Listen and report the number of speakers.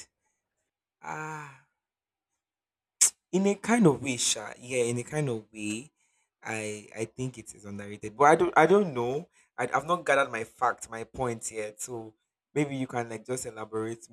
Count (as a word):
one